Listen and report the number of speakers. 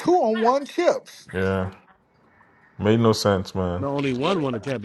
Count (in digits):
3